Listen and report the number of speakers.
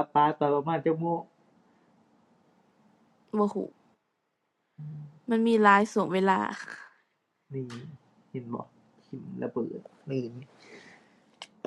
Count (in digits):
2